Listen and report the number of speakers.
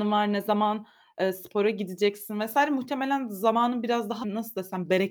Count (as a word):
one